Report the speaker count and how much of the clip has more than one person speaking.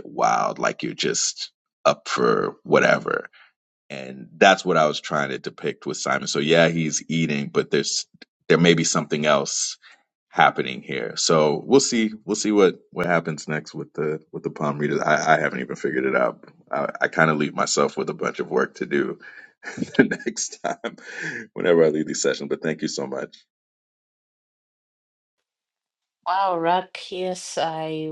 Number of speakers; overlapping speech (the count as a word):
two, no overlap